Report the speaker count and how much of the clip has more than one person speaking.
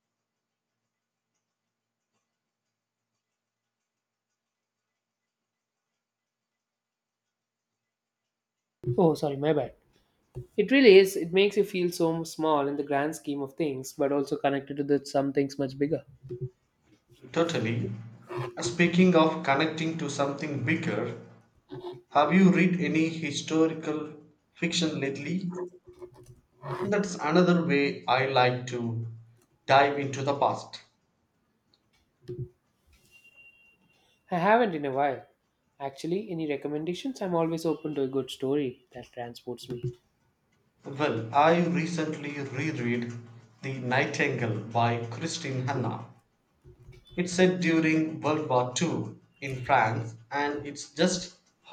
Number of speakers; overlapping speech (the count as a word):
two, no overlap